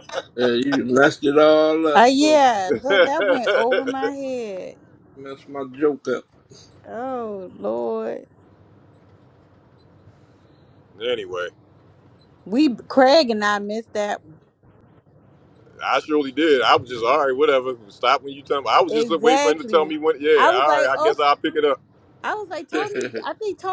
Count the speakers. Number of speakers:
three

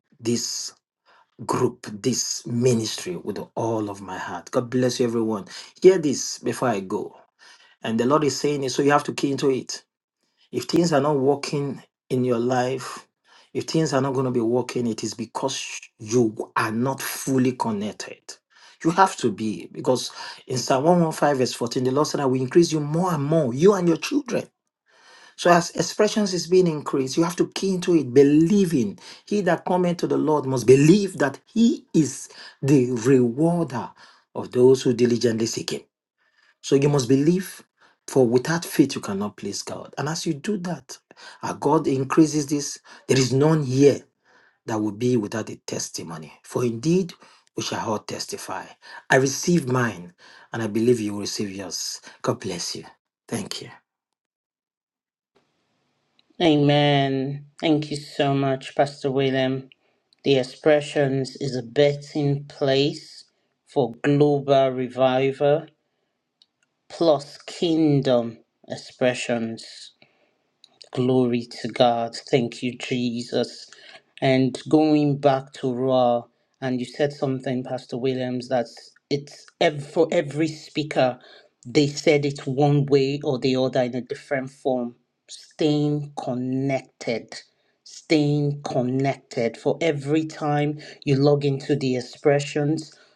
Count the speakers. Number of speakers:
two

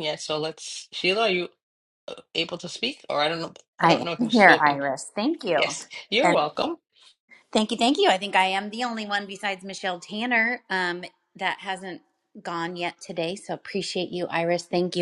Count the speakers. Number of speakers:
two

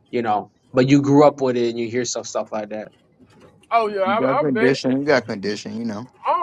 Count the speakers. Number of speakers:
three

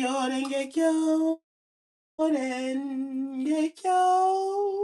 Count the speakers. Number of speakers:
one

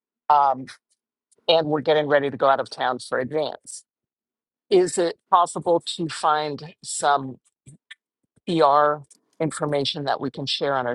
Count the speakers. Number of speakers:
one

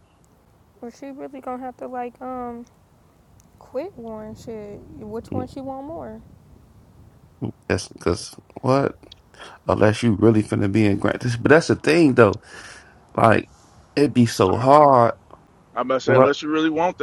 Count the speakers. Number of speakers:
three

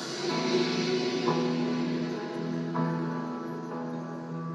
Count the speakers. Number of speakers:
zero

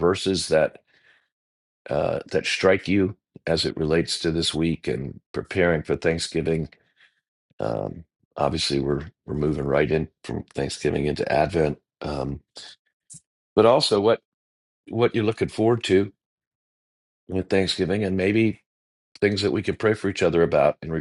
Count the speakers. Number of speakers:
one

